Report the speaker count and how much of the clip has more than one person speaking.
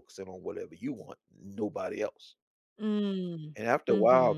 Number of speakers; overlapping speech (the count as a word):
two, about 12%